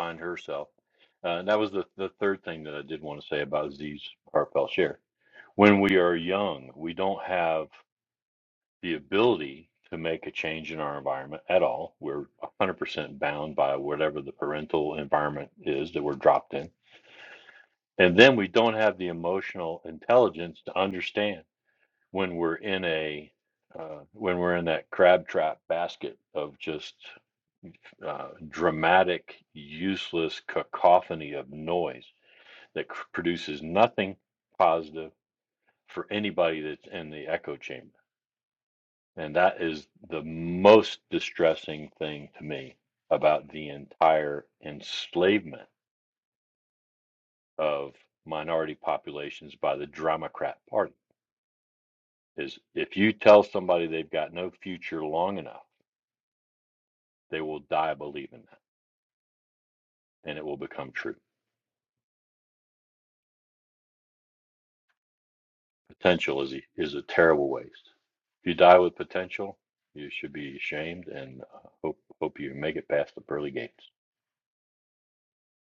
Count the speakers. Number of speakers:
1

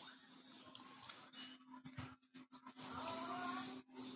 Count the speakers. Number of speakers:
0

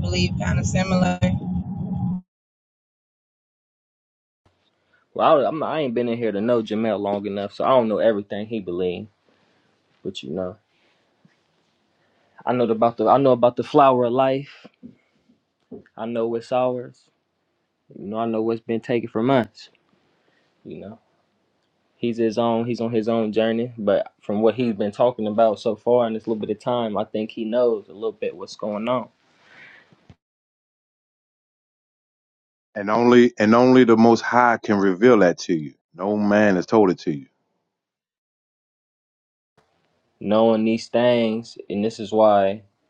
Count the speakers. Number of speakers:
3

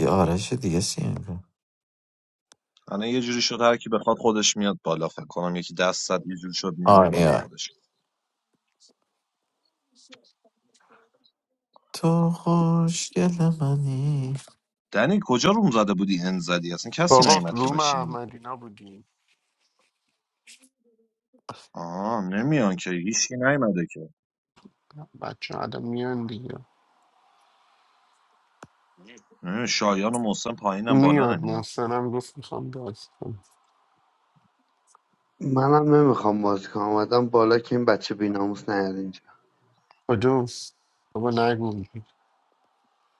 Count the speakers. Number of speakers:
4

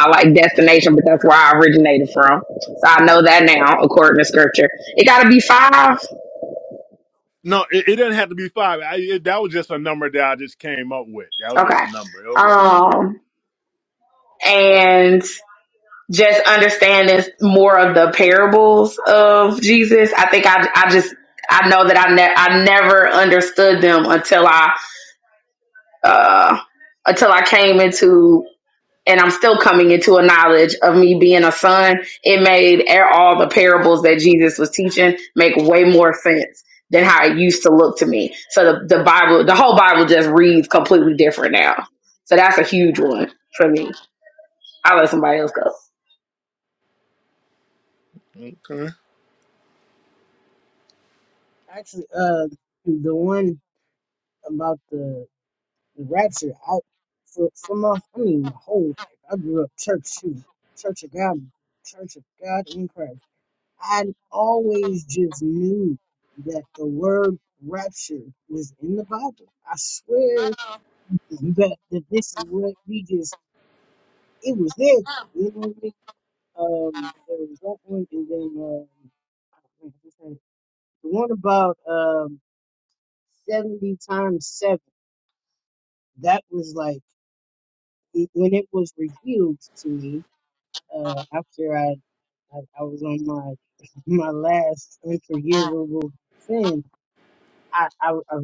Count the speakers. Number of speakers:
3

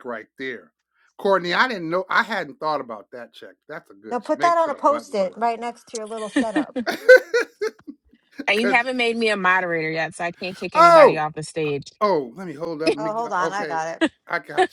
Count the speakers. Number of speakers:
3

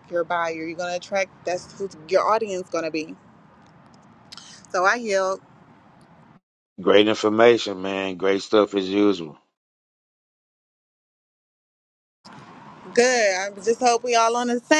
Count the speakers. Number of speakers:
2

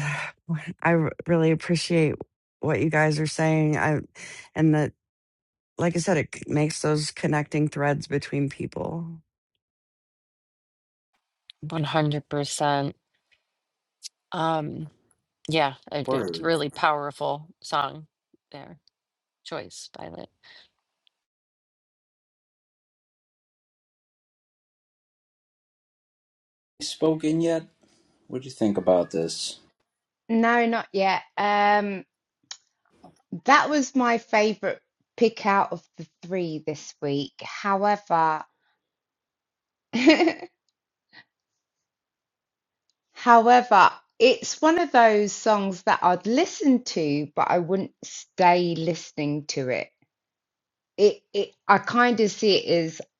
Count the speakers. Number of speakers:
4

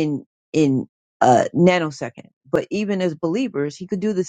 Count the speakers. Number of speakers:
1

